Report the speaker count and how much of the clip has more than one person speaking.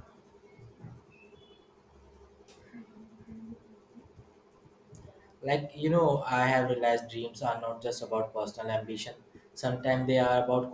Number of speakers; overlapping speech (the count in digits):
1, no overlap